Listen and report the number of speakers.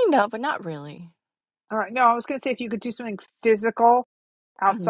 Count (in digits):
2